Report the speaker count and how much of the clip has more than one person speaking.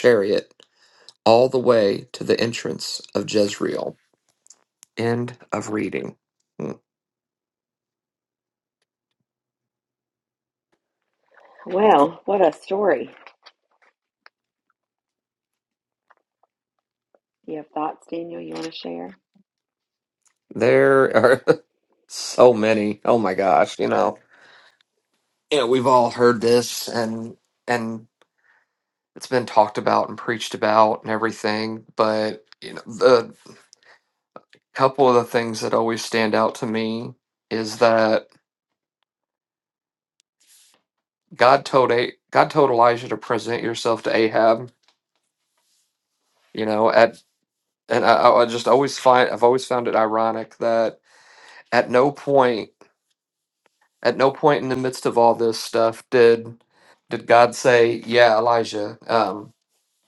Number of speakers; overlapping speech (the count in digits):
2, no overlap